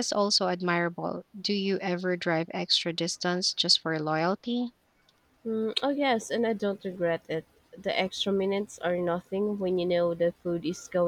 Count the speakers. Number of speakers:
two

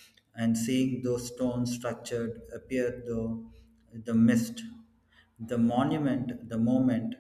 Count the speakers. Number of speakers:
one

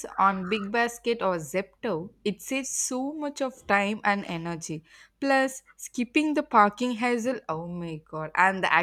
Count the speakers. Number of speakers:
one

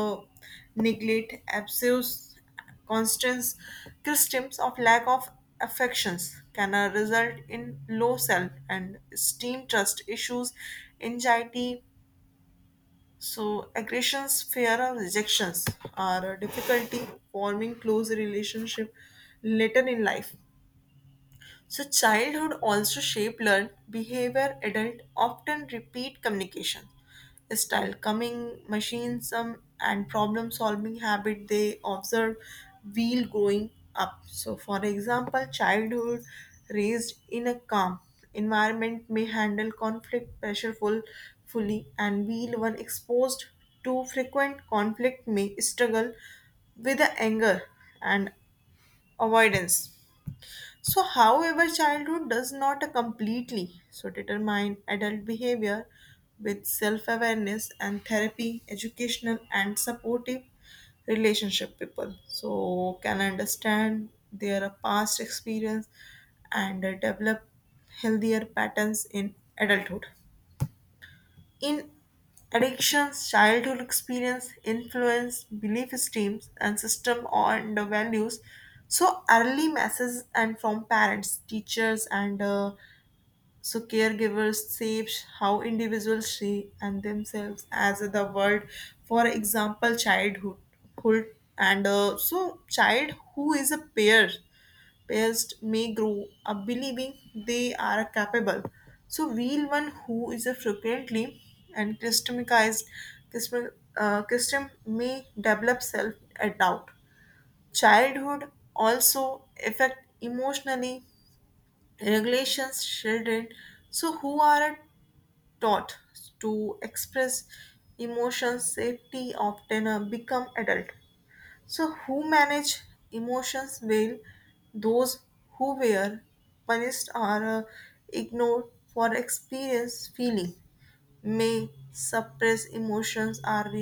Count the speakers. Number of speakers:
one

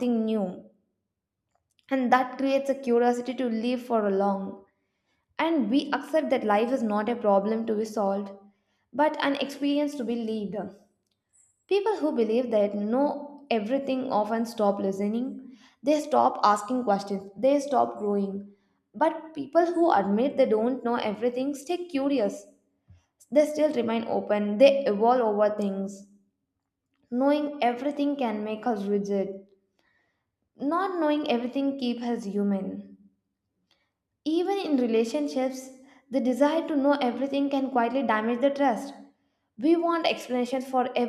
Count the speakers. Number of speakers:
one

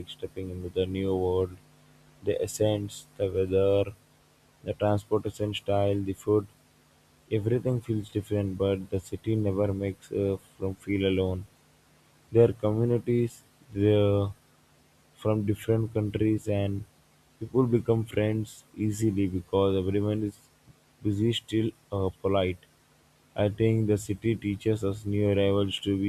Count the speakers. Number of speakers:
one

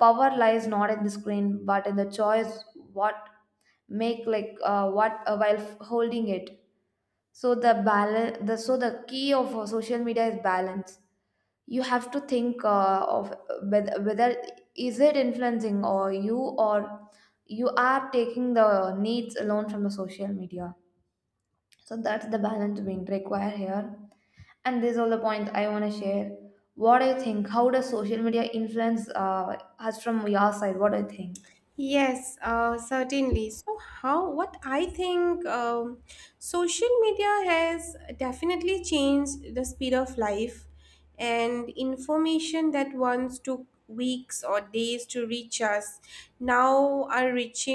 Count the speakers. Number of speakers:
two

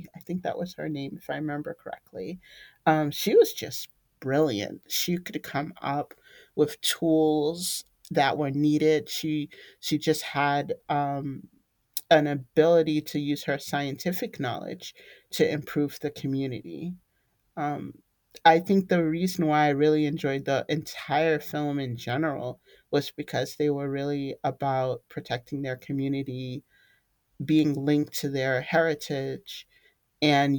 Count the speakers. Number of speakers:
one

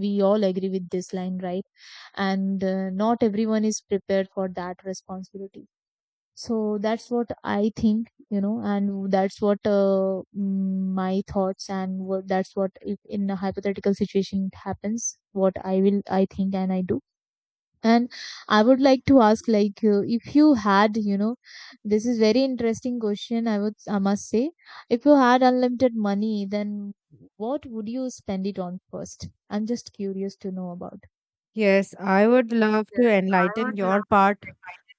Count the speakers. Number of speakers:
two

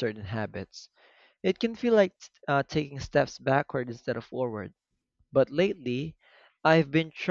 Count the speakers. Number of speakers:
one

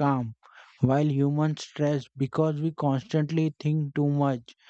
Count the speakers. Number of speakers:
one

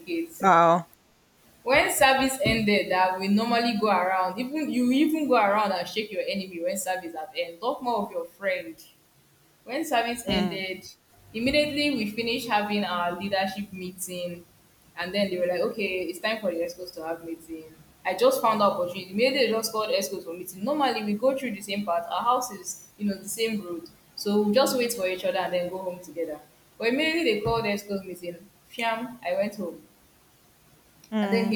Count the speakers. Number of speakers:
two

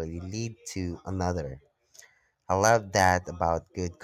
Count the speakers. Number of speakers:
one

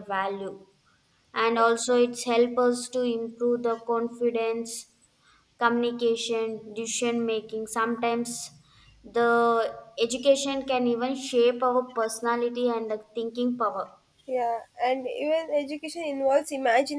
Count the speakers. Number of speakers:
two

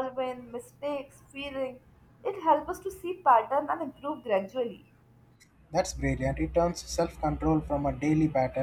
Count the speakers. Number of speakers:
two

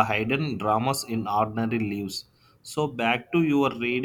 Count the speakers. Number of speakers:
one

